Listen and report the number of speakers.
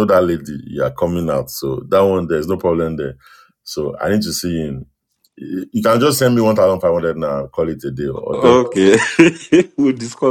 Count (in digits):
2